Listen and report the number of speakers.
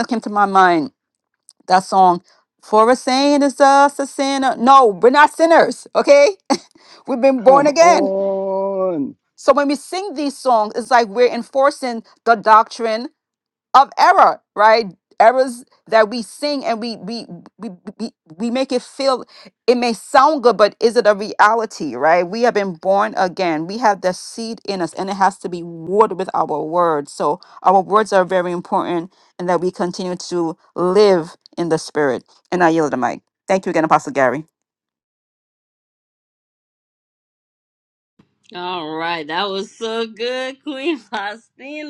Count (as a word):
three